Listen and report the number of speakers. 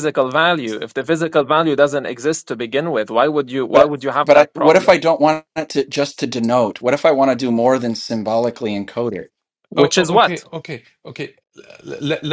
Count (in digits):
3